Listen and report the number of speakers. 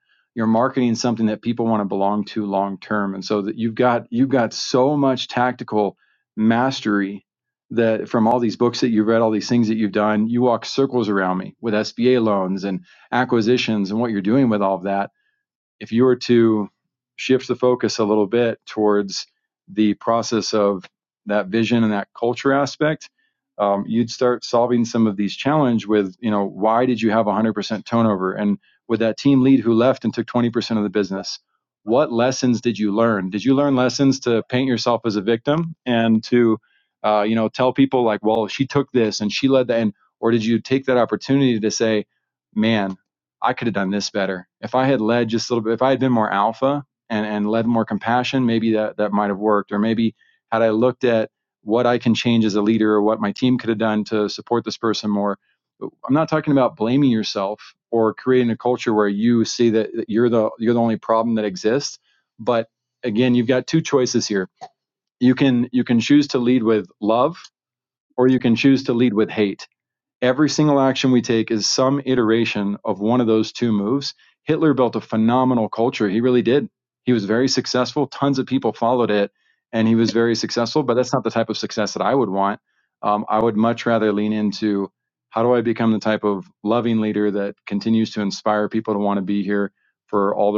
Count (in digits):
1